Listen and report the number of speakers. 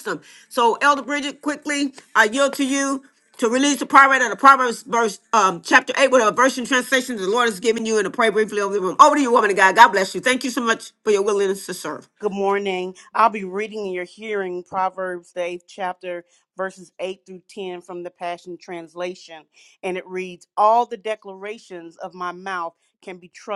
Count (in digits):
2